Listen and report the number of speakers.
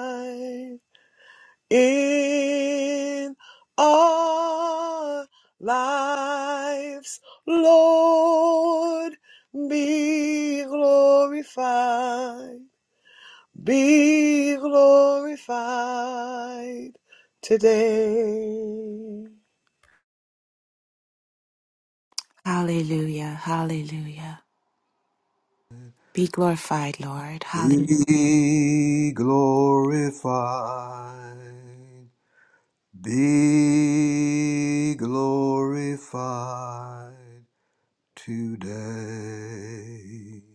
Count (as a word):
three